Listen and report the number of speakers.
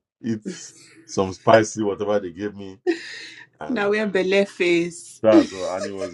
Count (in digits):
2